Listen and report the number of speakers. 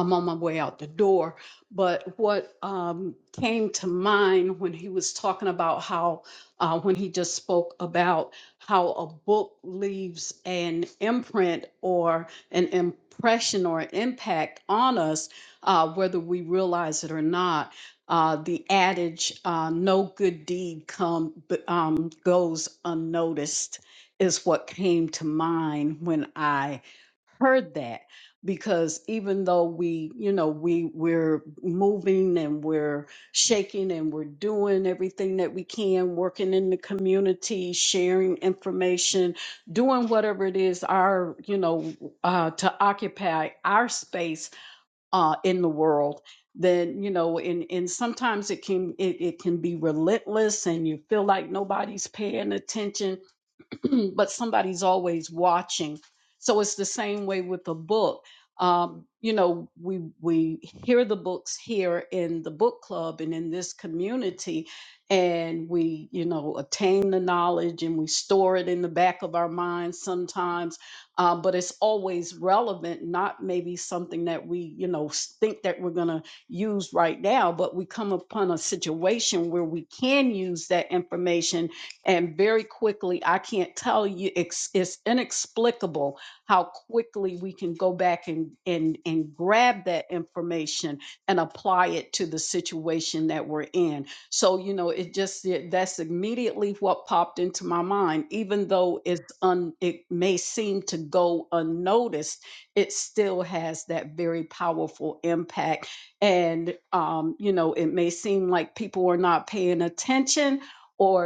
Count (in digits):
1